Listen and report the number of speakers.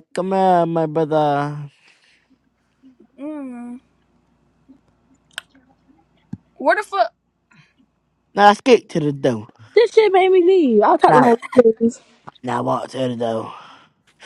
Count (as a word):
three